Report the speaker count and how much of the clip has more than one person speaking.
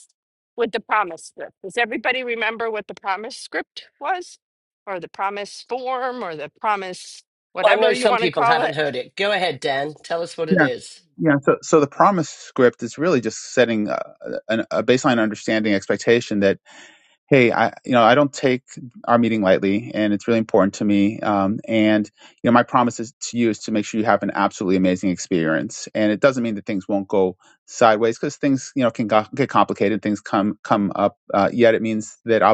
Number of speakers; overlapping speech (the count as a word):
three, about 4%